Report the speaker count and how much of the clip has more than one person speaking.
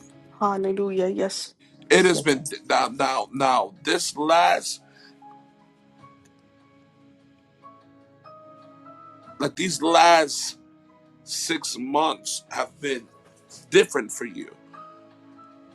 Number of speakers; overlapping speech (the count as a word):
two, about 1%